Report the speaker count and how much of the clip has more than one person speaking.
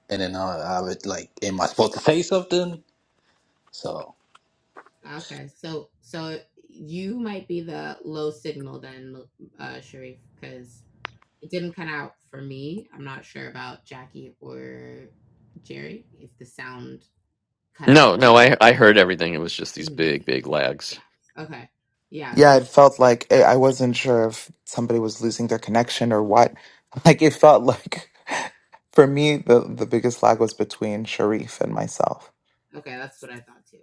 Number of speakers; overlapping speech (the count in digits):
4, about 3%